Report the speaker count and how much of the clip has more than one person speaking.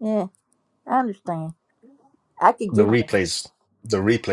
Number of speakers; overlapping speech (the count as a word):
two, about 8%